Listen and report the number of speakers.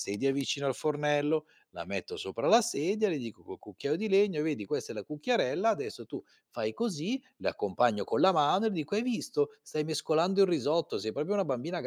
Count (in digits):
1